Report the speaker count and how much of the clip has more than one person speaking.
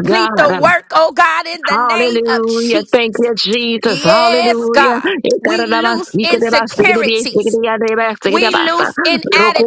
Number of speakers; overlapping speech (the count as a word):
two, about 53%